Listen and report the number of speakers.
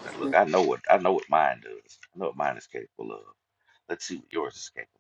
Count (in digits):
1